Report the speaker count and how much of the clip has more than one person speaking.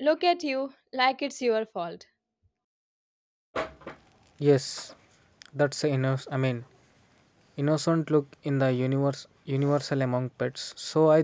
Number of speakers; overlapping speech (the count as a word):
two, no overlap